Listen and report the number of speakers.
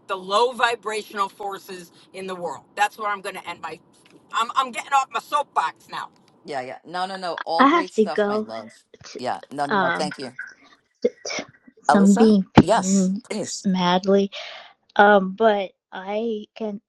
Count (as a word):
three